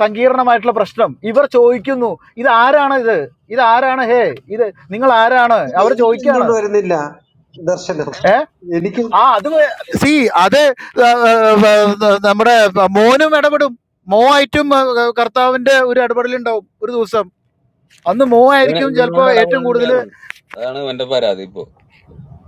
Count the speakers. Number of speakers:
three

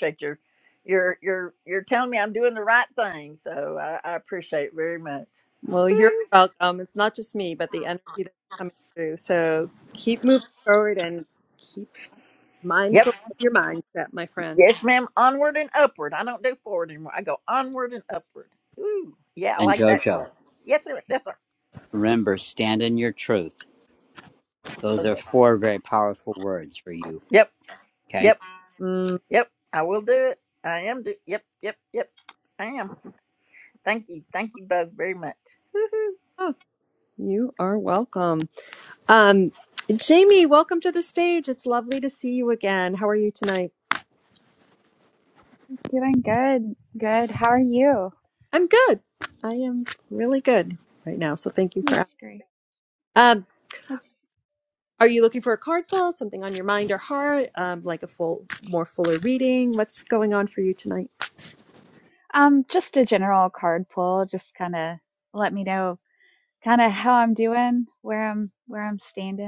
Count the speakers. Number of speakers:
four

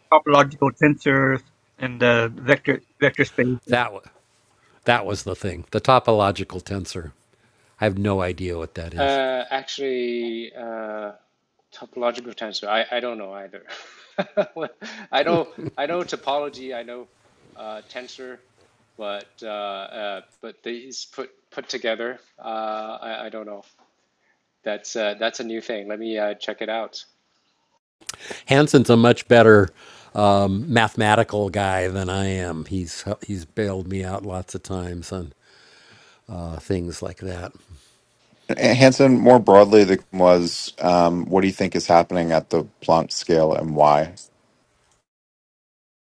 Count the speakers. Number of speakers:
four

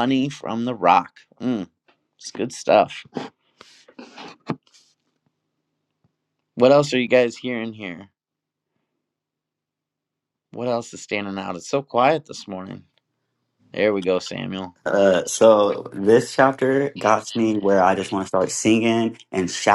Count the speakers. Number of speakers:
two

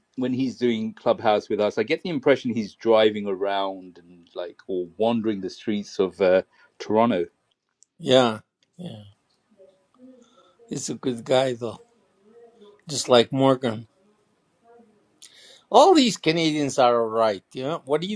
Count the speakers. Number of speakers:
two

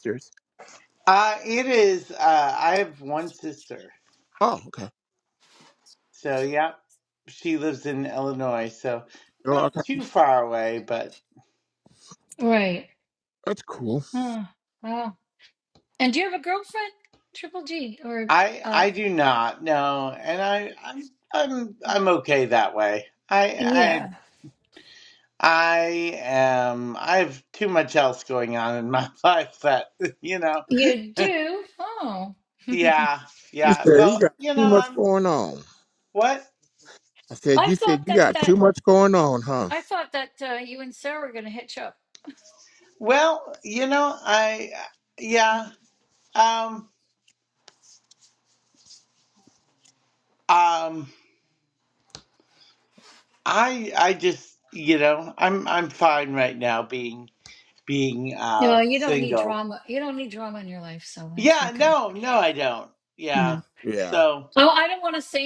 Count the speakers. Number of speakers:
three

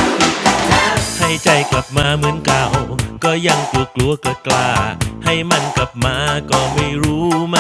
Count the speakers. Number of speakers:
one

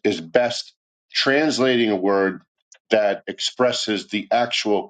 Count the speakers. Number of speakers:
one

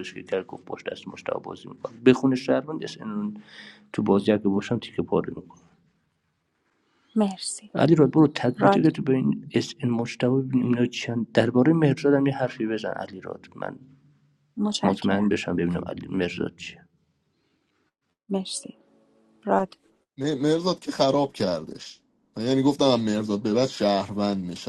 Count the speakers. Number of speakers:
three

